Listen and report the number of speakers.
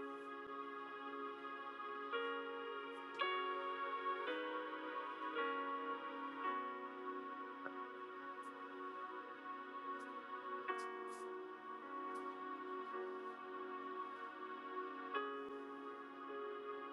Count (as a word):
zero